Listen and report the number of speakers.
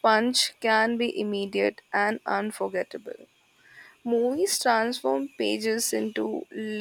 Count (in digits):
1